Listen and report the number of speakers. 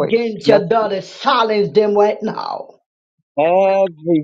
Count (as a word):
two